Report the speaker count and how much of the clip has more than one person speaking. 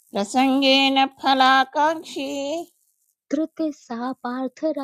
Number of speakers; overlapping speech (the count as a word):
two, no overlap